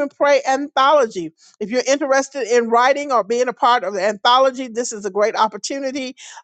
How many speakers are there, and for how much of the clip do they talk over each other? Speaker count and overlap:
1, no overlap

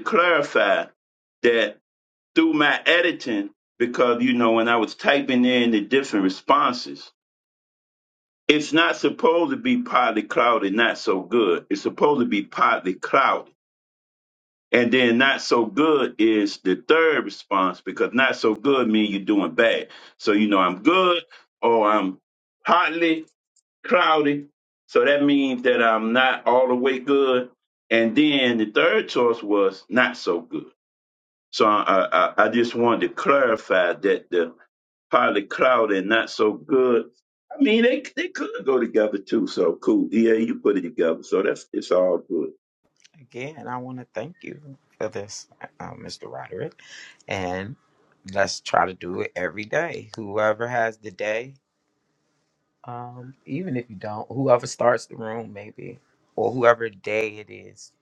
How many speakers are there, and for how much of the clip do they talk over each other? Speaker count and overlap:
2, no overlap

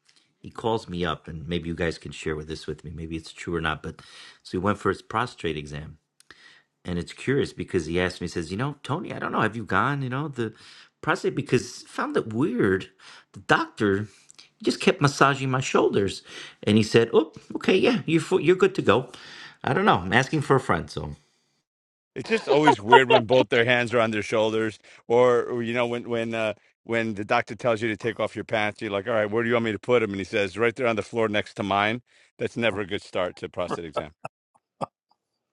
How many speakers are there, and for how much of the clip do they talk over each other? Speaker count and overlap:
2, no overlap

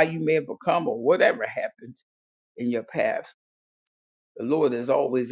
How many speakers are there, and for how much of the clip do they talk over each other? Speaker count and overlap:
1, no overlap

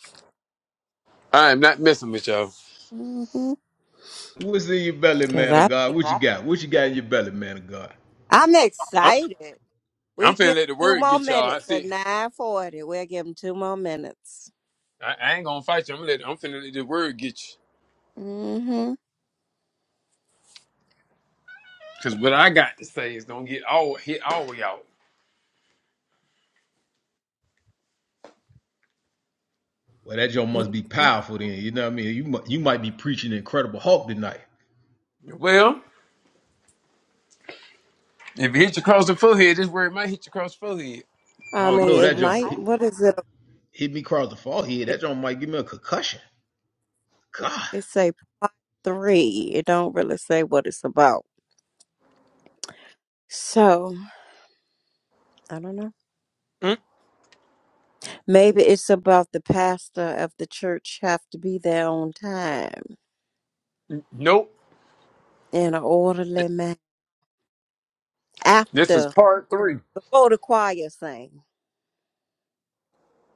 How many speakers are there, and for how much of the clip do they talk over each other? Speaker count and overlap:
3, about 6%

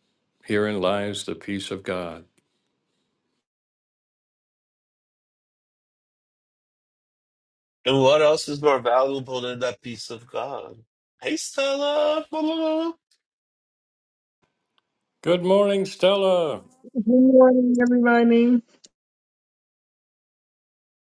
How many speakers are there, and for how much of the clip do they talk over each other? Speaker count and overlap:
3, no overlap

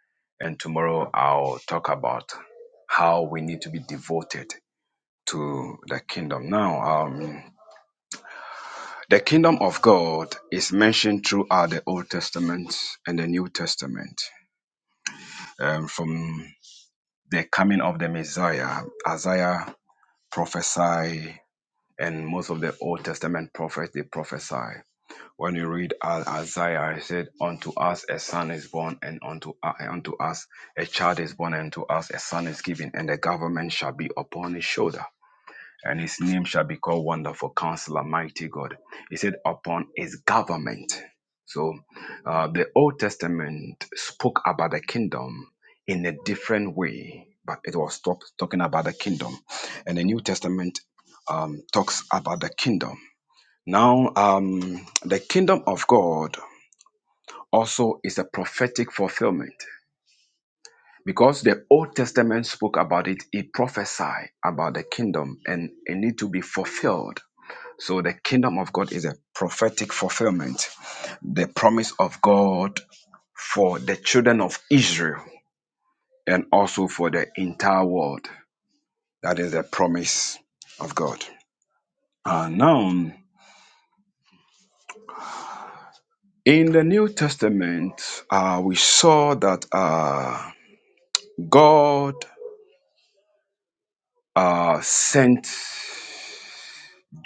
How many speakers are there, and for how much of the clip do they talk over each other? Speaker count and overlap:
1, no overlap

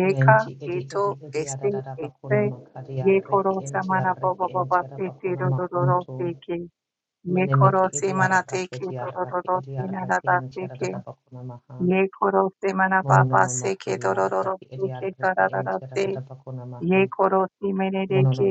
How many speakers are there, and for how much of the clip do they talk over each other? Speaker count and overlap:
2, about 63%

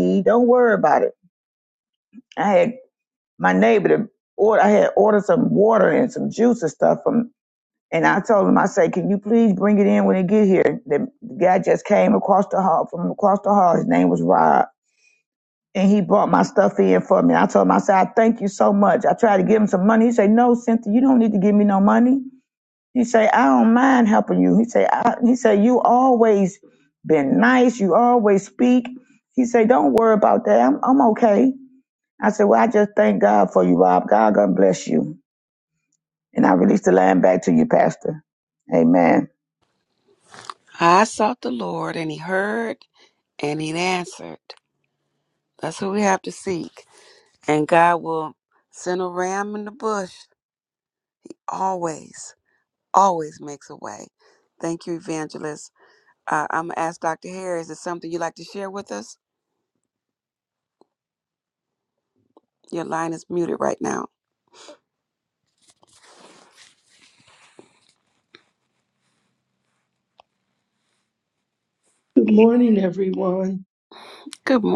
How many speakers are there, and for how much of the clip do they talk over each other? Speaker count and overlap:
3, no overlap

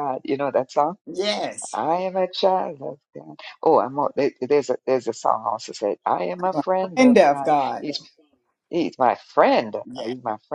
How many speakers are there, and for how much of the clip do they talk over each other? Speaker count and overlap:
2, about 15%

